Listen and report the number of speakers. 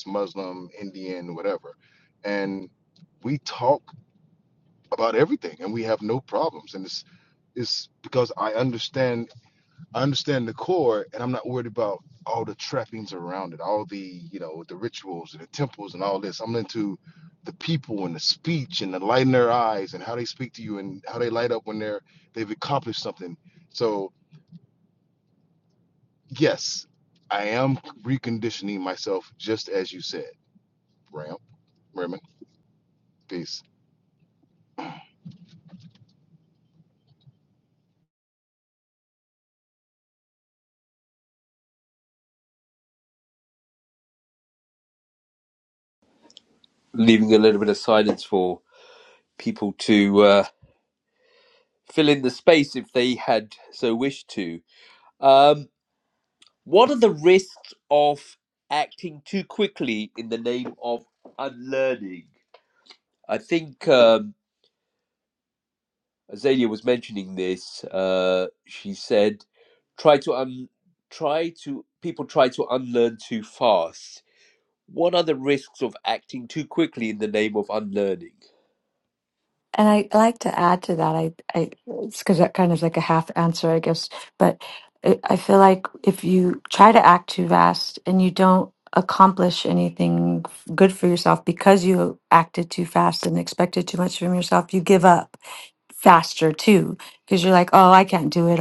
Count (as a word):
three